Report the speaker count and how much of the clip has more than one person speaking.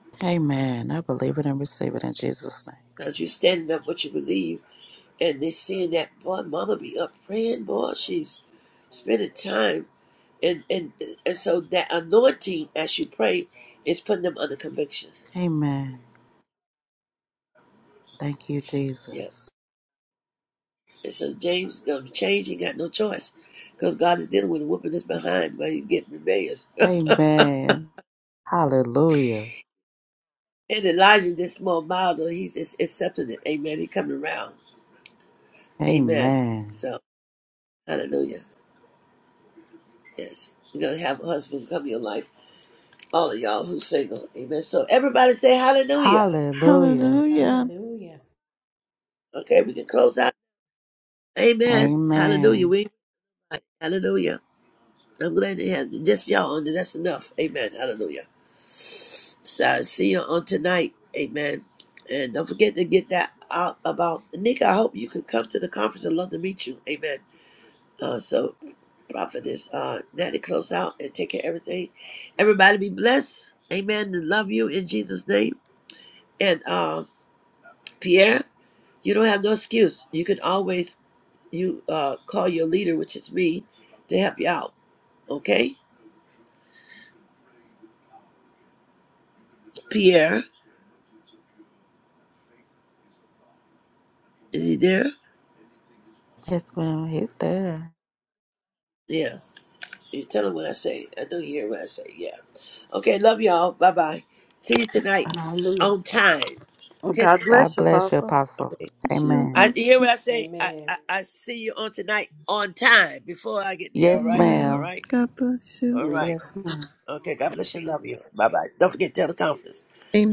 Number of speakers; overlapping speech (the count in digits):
5, about 6%